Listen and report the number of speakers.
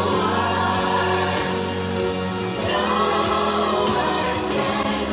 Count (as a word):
zero